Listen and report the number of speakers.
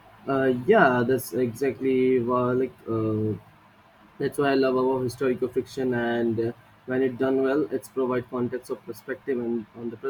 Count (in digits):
1